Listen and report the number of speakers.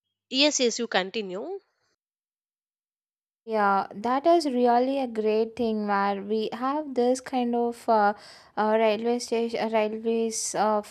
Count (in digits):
2